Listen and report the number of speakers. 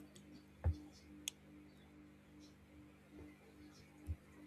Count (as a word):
zero